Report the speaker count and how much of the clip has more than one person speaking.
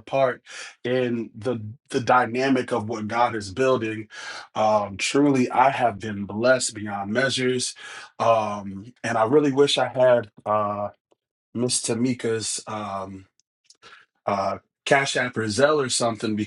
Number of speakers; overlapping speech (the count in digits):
1, no overlap